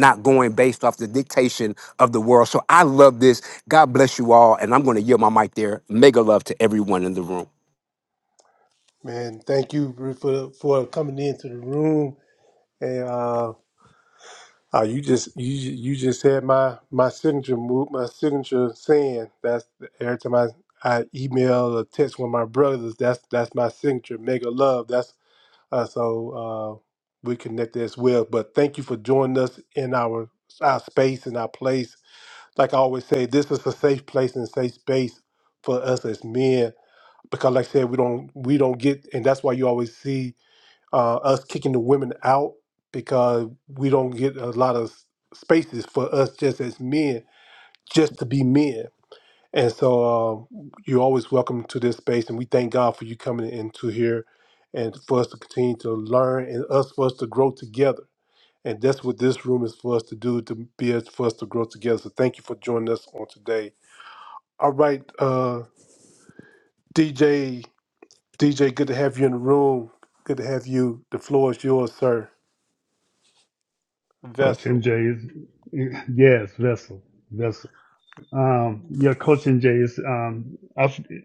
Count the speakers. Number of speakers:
three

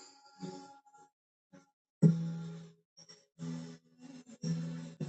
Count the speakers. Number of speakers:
zero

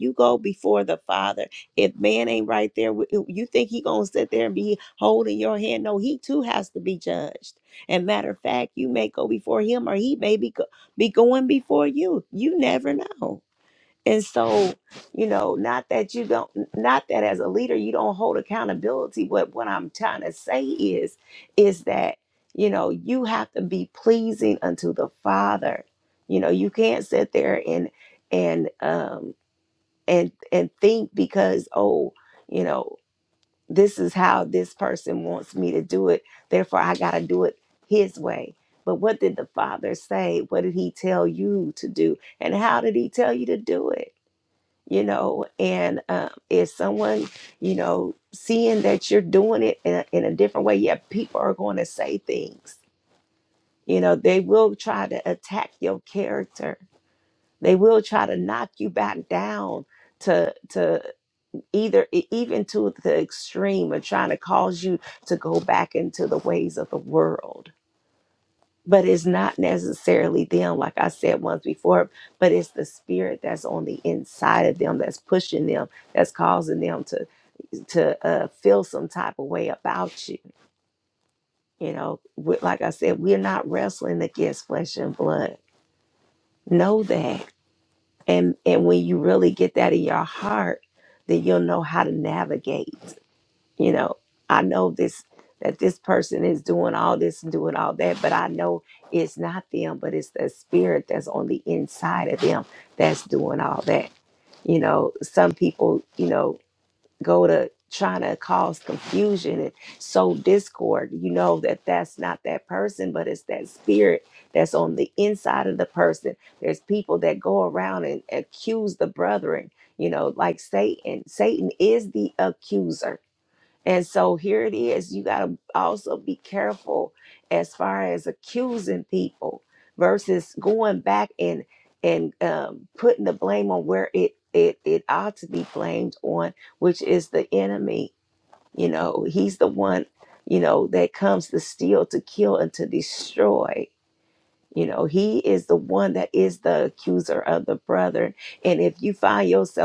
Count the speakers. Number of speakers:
one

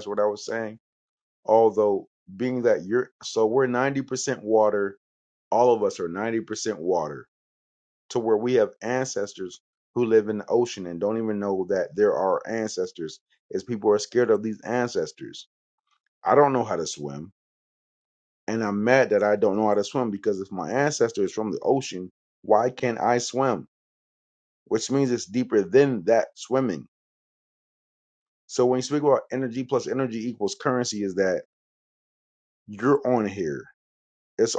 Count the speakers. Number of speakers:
one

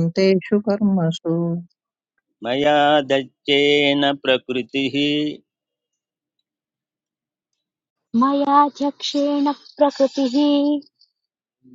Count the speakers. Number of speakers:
three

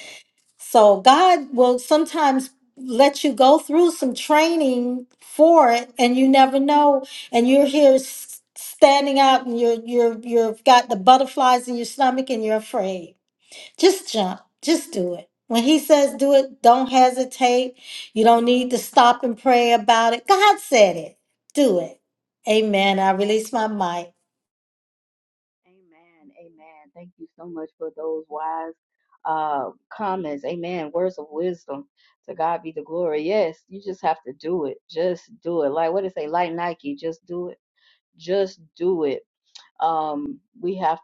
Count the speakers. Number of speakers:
two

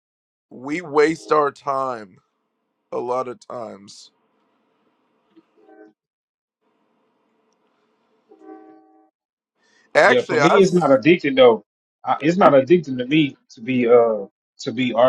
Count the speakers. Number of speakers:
two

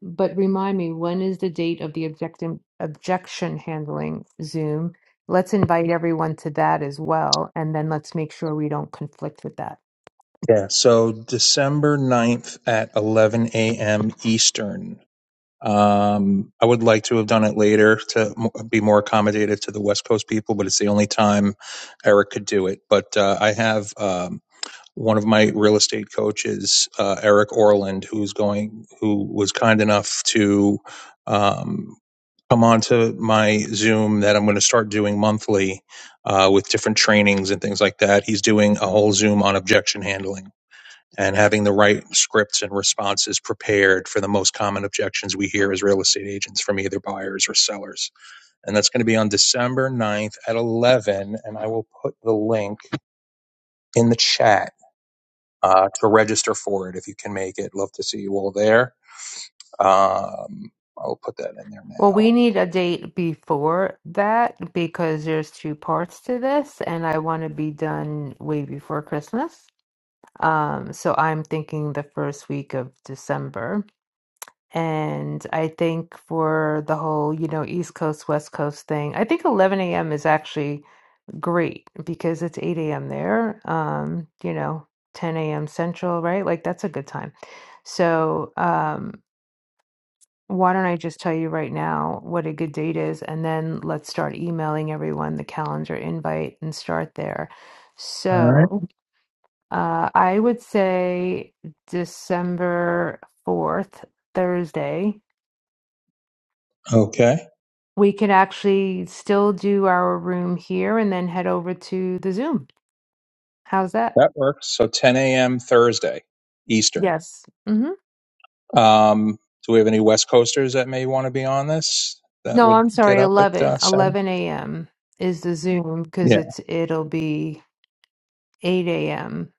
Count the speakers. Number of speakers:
two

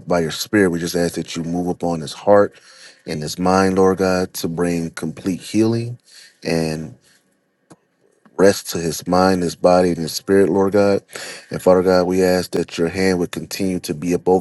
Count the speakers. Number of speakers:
one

